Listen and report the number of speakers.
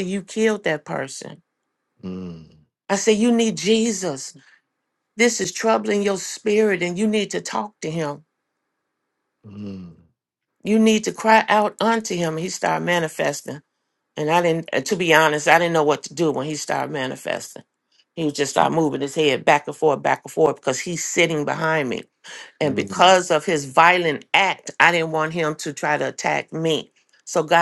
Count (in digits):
2